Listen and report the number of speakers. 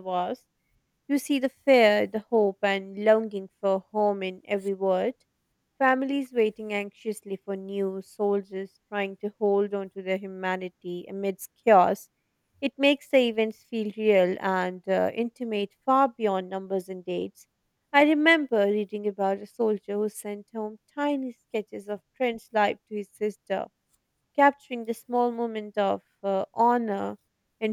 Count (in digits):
1